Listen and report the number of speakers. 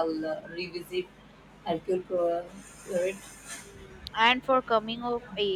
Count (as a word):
two